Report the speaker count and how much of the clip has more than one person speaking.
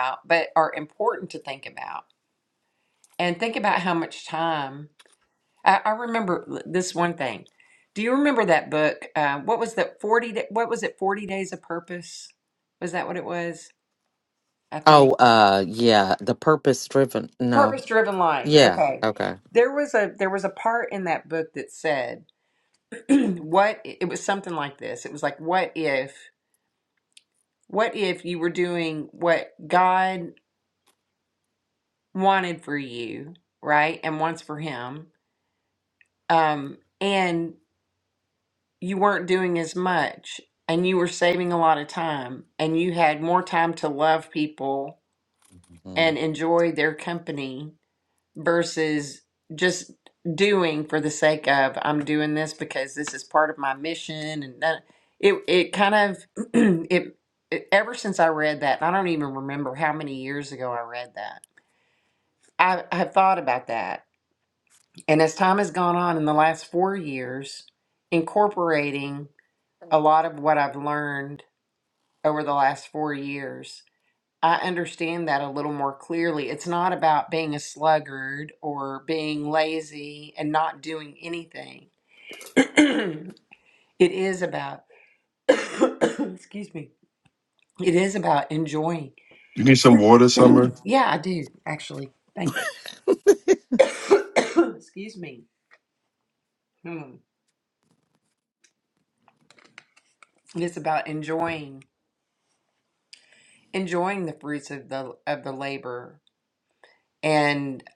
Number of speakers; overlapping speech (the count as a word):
three, about 1%